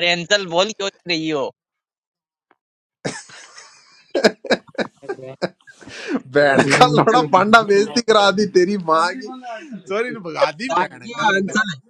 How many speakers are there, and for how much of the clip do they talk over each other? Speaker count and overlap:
three, about 13%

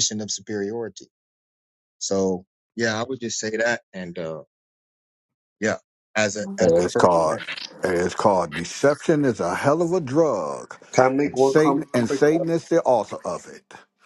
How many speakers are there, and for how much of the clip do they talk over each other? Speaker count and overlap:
three, about 13%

